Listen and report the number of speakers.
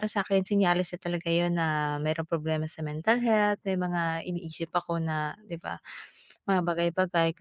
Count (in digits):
1